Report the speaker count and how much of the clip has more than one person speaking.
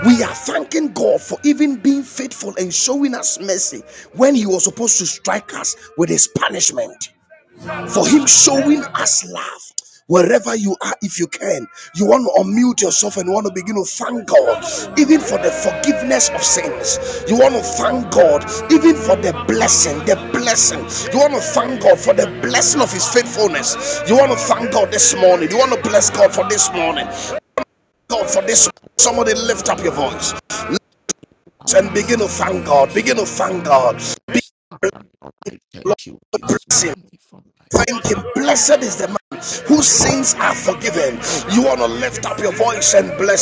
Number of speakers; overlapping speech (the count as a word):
two, about 8%